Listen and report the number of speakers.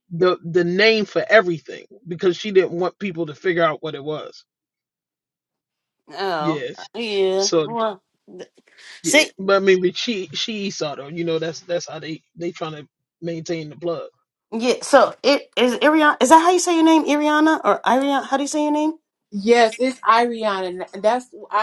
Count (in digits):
3